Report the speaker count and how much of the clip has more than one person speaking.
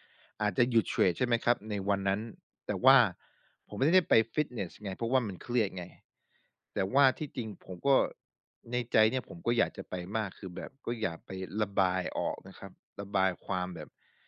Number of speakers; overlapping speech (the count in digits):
1, no overlap